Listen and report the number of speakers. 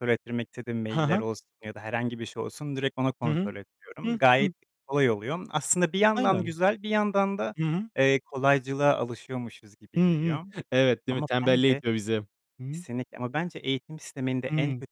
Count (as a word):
two